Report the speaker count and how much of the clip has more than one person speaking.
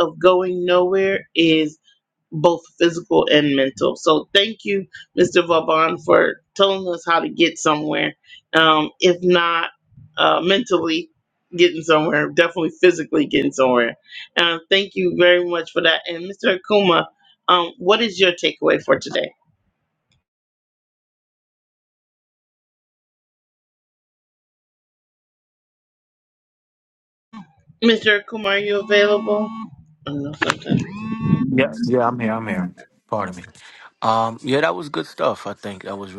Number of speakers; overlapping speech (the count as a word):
two, no overlap